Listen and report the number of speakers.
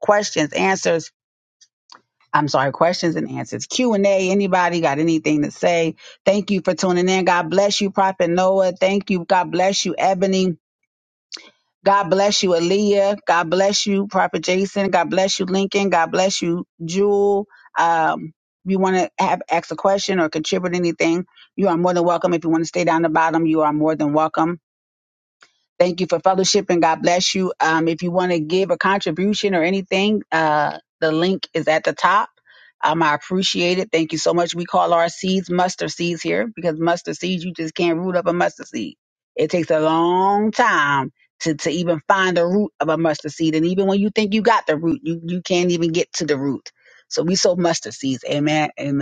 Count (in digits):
1